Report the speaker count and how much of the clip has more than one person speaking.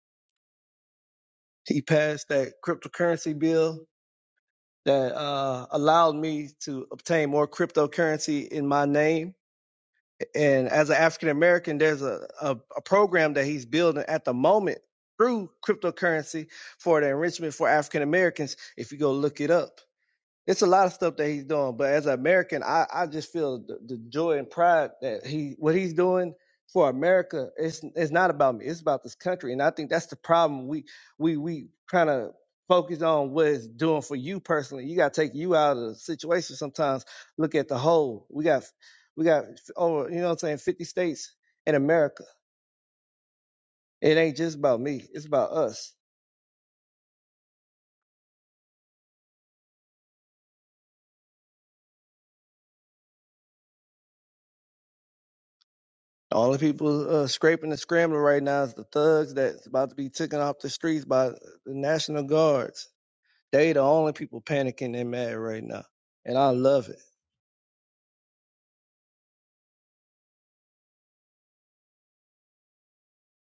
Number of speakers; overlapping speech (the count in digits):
1, no overlap